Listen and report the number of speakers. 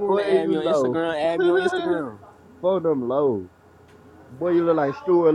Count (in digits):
2